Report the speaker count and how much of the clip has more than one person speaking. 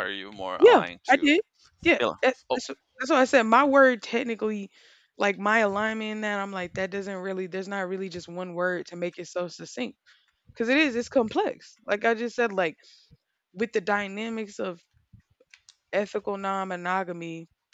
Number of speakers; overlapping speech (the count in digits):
2, about 6%